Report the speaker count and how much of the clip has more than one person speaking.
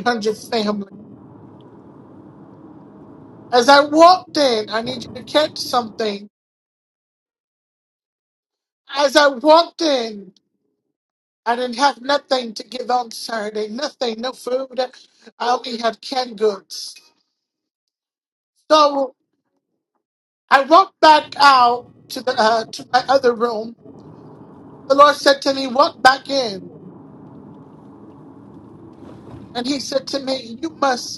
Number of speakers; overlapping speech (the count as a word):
one, no overlap